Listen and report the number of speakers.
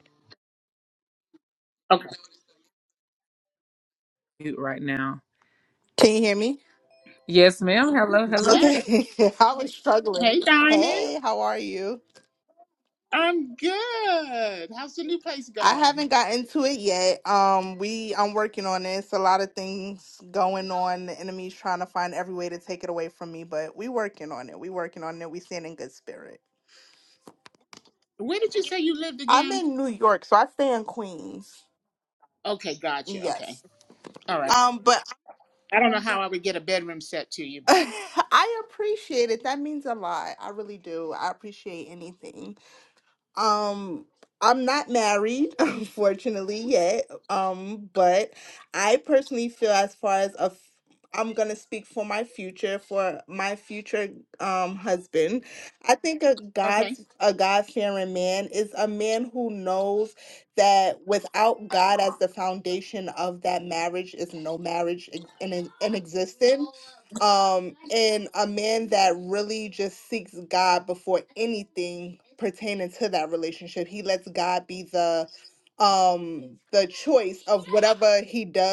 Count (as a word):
three